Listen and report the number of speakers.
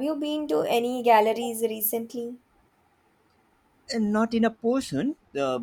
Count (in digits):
2